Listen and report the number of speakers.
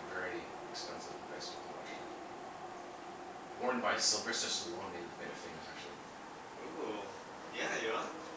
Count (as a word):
two